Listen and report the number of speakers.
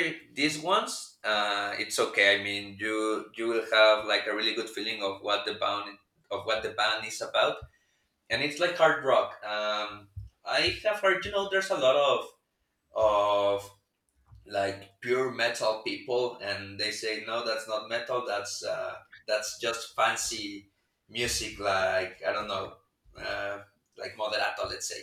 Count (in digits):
1